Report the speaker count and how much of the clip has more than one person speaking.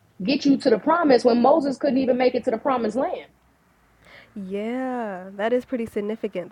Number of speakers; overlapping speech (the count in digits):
2, no overlap